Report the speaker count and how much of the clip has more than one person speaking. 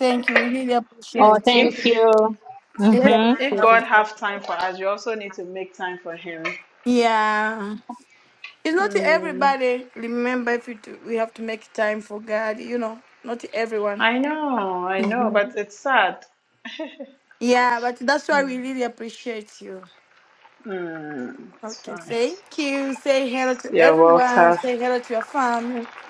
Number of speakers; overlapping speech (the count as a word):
three, about 15%